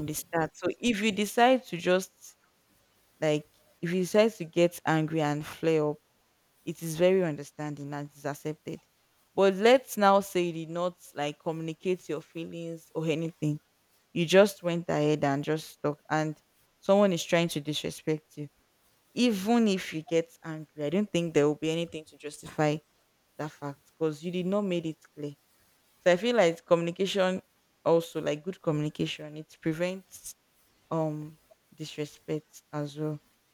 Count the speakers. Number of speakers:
one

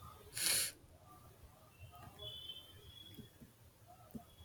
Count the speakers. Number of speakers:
zero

